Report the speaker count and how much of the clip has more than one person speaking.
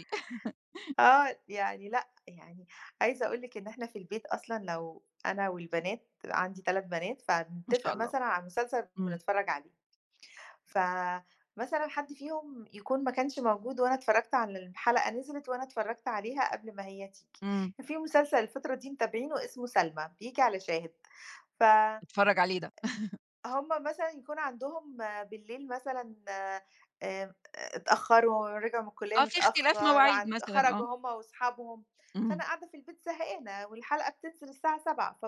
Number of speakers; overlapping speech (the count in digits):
2, about 7%